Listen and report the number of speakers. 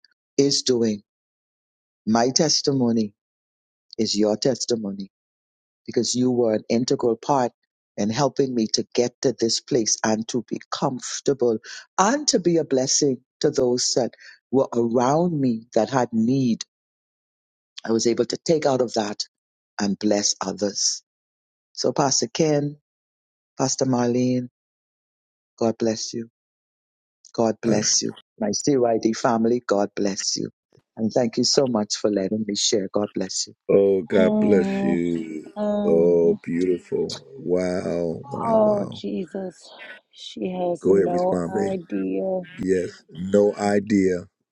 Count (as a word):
three